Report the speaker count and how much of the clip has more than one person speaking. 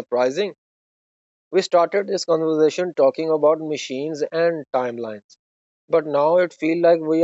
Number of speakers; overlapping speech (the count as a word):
one, no overlap